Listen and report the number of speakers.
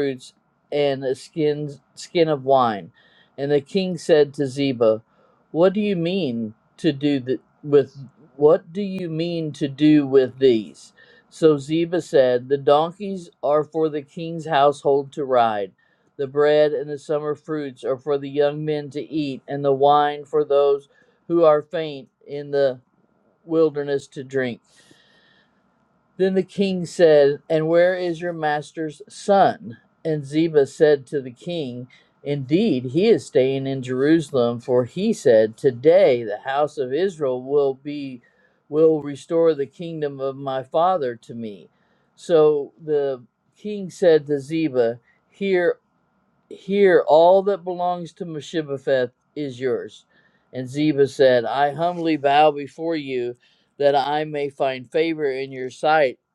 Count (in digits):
1